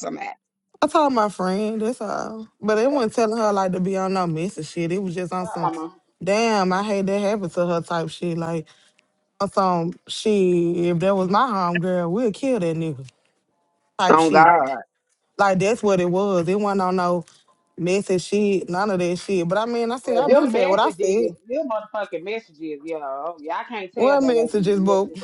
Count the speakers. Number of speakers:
3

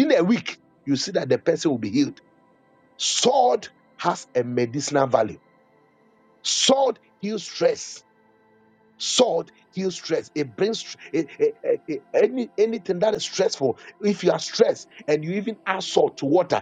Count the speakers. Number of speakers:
1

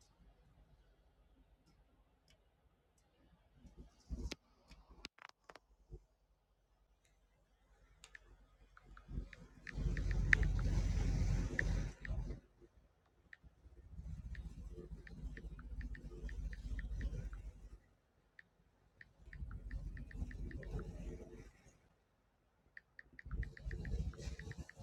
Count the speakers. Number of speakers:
0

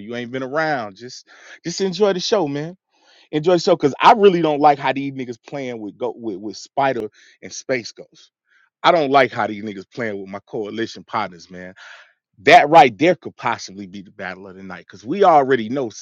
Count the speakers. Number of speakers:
1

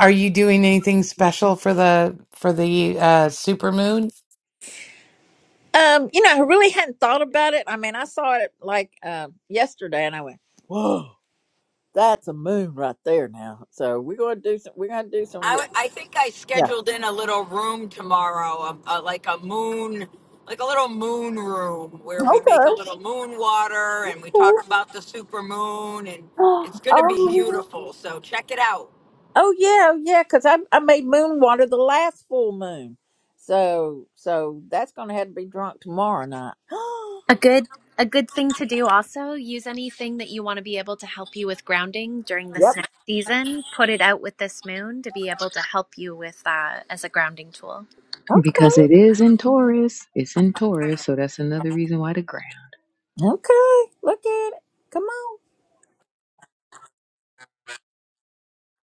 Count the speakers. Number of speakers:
5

